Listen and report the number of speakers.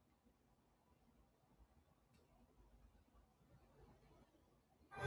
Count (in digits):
0